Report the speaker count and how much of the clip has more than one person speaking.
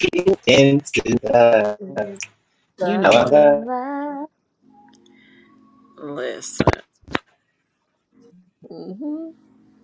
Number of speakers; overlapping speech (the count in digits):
3, about 9%